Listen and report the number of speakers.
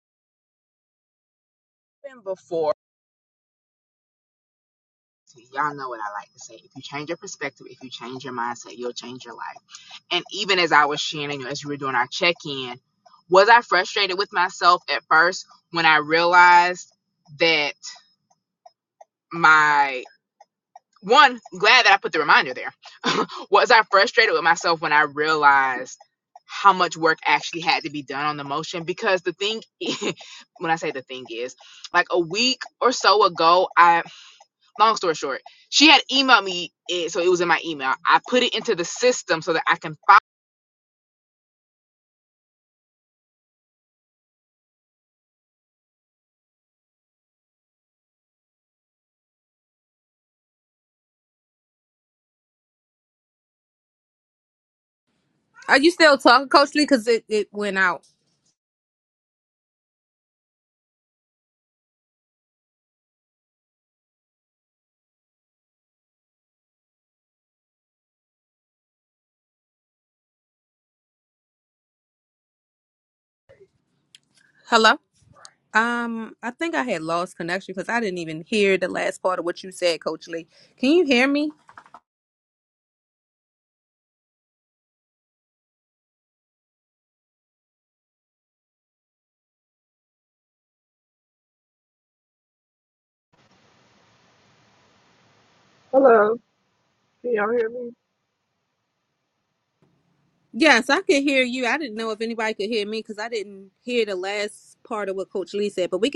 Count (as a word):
three